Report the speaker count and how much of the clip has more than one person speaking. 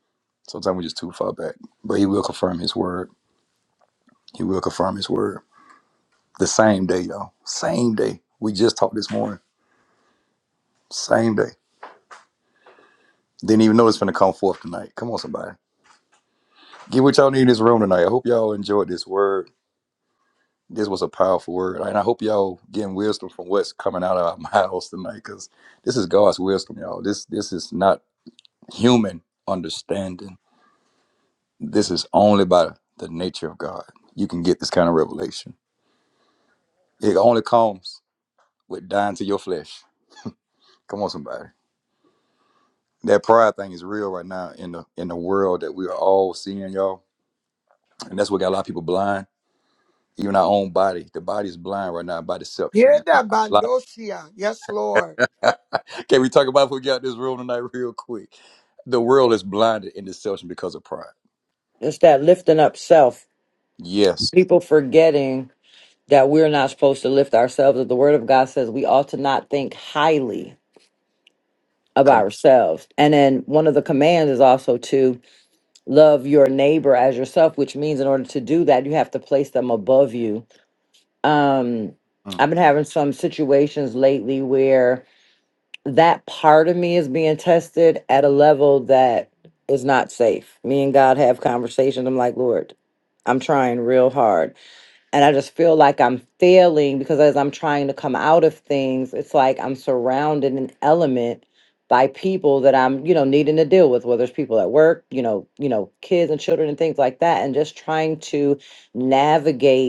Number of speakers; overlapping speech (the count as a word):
three, about 1%